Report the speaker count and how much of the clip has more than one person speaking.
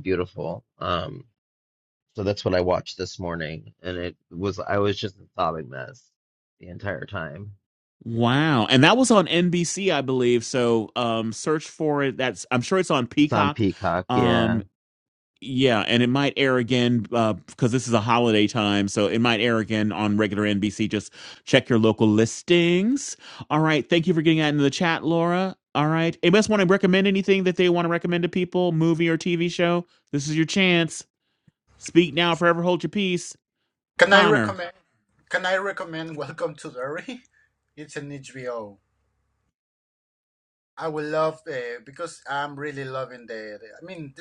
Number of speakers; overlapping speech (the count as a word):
three, about 3%